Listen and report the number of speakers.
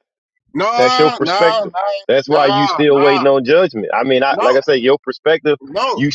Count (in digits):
2